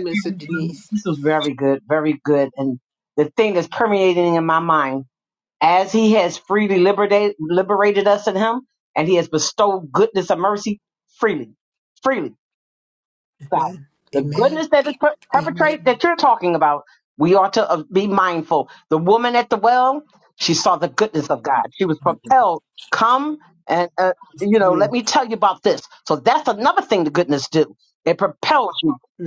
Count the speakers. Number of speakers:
two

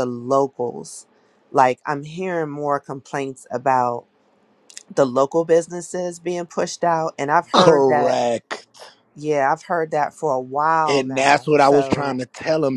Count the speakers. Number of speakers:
two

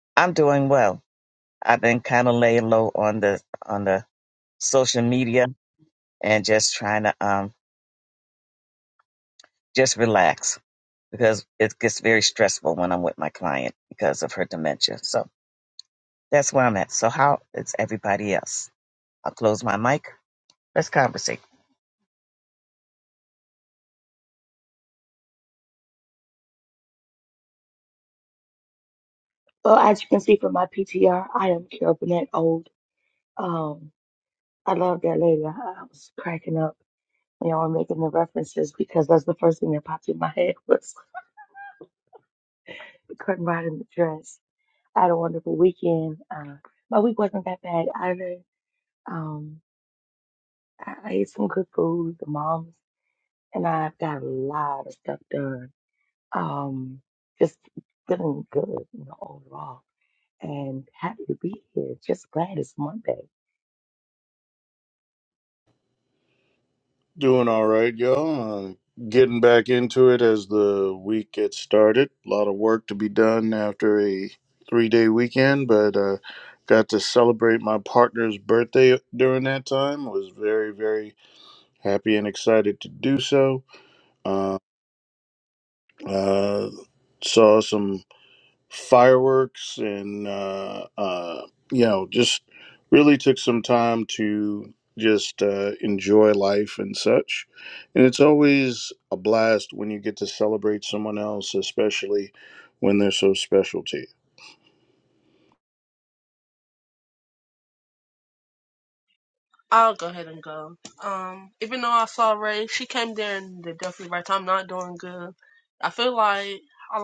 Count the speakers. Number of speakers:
four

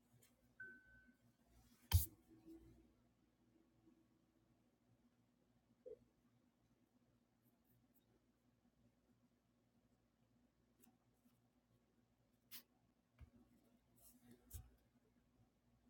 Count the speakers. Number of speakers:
zero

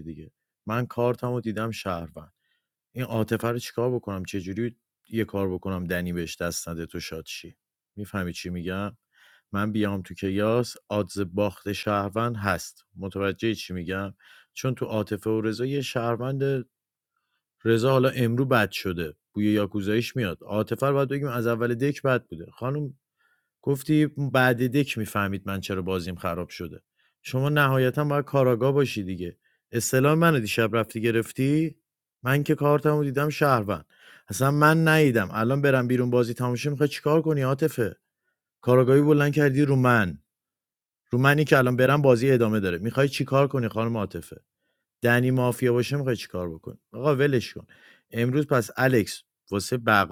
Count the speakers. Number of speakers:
one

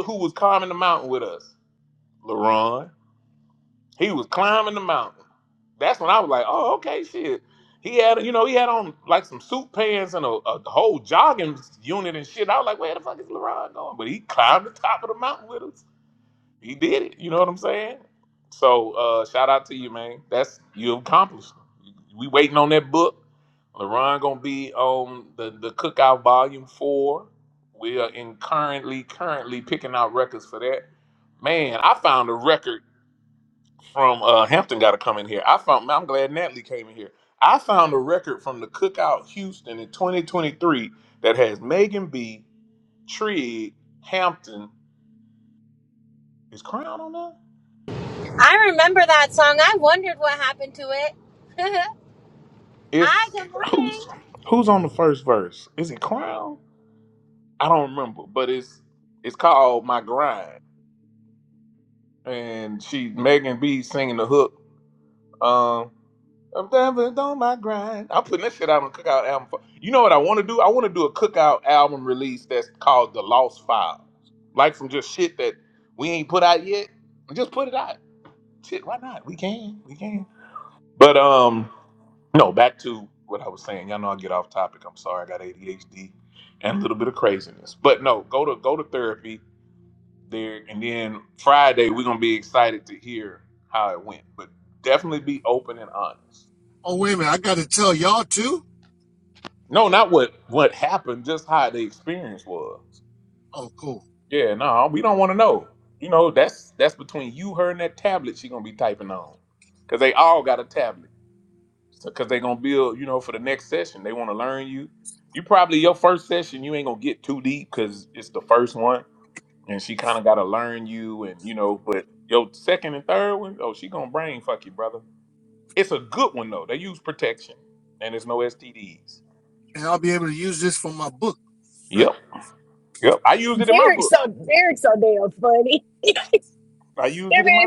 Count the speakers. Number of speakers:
four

